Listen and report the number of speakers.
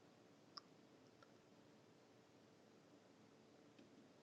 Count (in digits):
0